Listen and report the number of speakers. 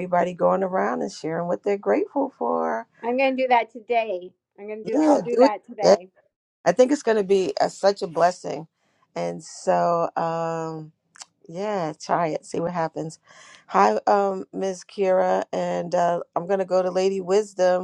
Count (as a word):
two